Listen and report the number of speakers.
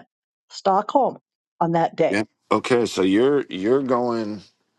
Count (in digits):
2